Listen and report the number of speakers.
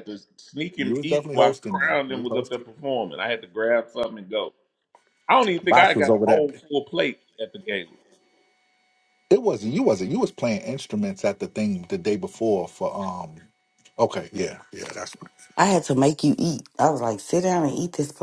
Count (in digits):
3